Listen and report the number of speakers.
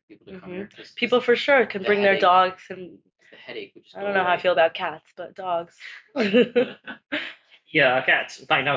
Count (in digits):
3